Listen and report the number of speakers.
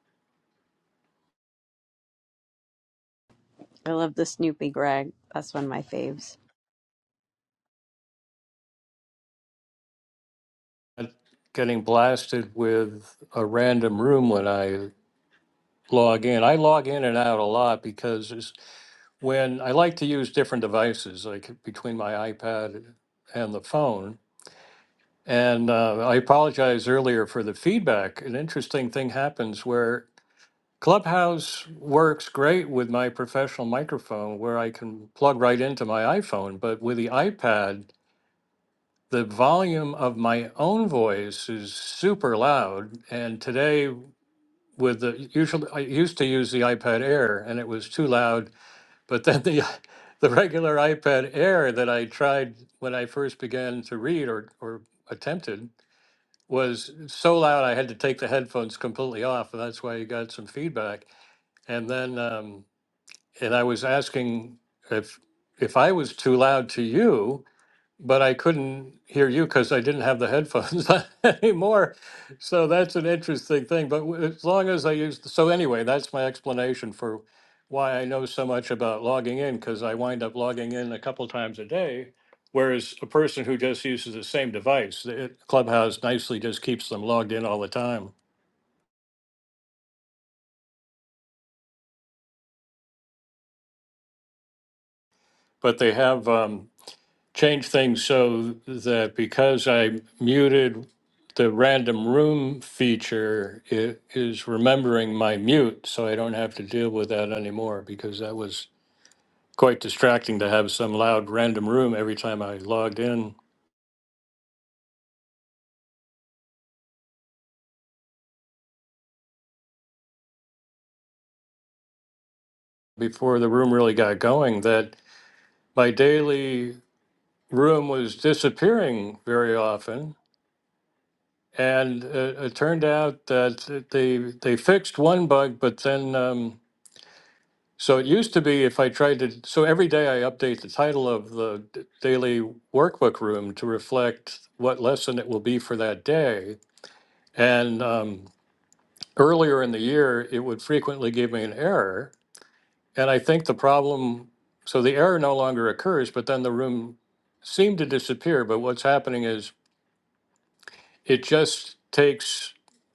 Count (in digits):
2